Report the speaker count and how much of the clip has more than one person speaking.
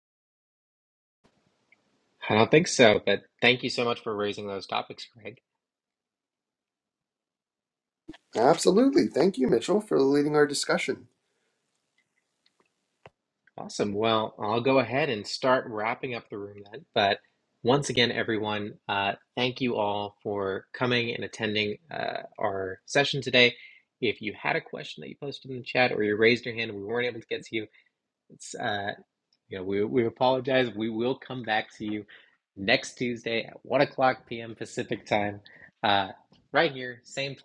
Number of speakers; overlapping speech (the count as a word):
two, no overlap